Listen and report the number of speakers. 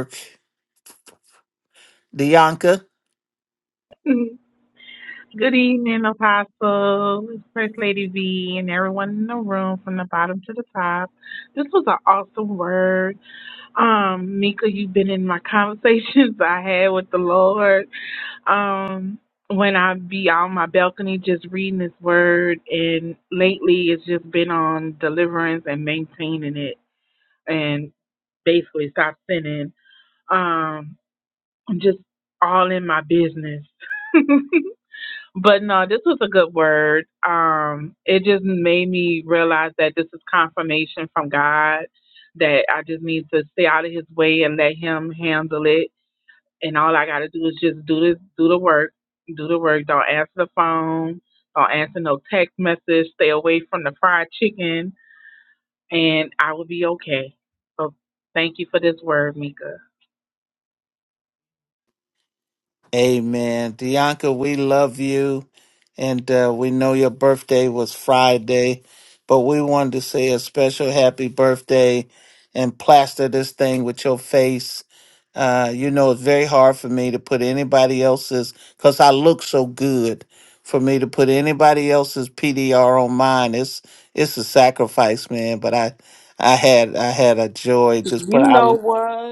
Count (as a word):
three